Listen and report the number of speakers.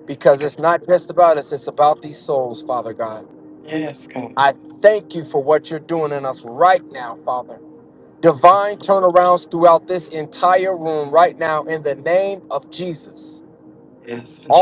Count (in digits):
2